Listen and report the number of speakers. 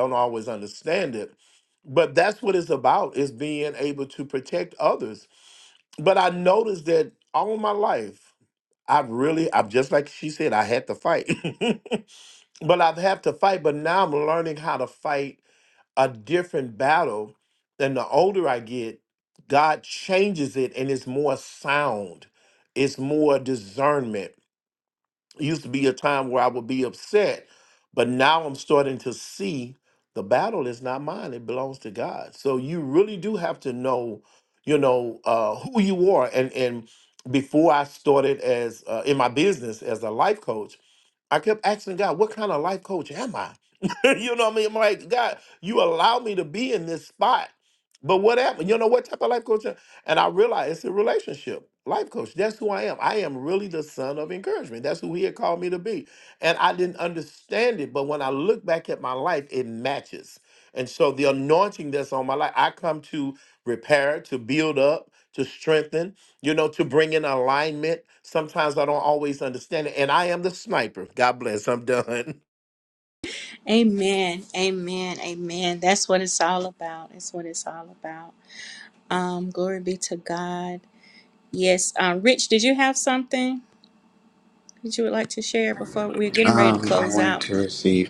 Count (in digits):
3